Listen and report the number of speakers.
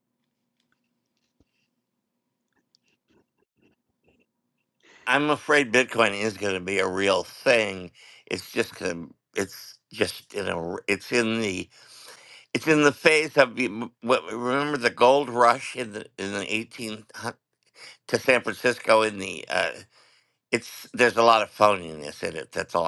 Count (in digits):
1